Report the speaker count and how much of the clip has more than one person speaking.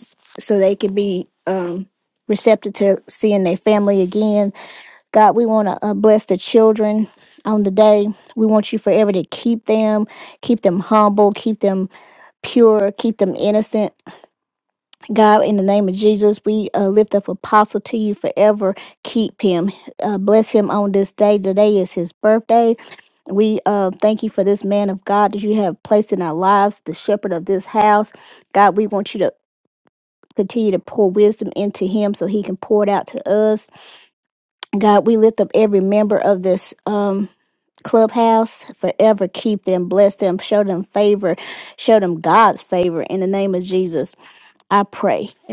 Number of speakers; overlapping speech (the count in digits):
1, no overlap